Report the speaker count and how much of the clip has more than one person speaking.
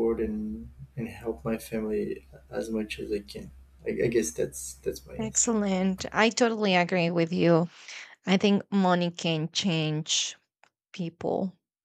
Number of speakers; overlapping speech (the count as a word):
two, about 3%